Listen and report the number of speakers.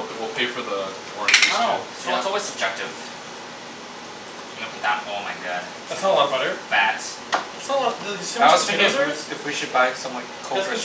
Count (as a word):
four